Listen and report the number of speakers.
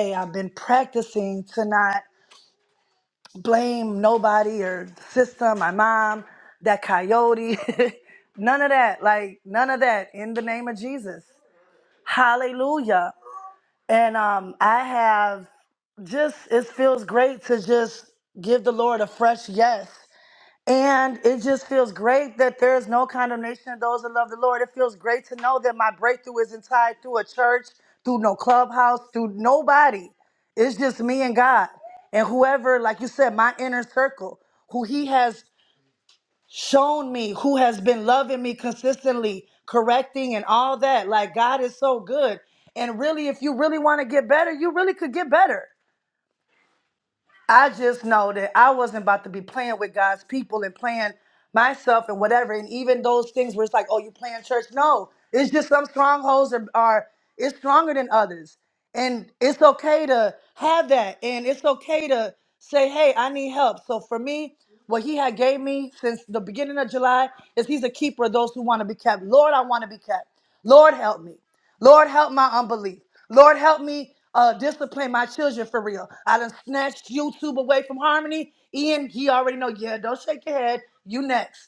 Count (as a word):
one